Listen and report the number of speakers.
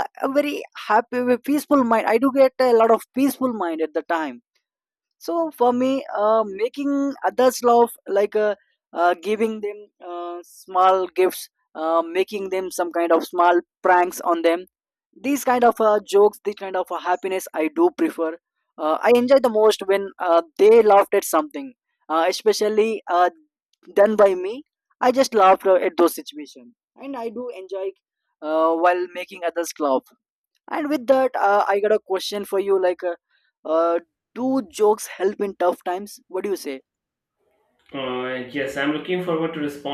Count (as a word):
two